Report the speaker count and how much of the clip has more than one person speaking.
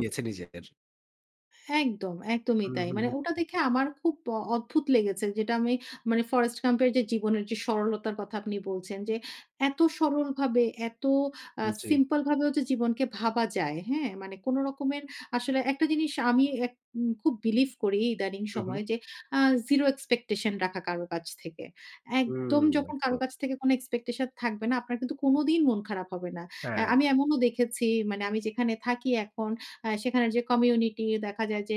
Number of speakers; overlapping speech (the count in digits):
2, about 7%